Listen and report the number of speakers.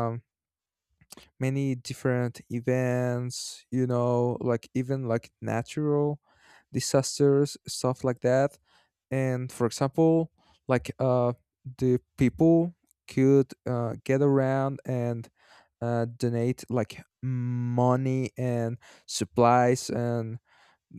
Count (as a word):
one